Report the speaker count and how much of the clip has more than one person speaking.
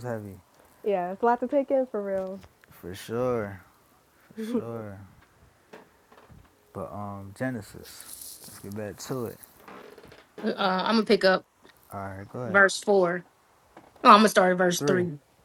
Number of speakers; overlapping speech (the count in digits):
3, about 2%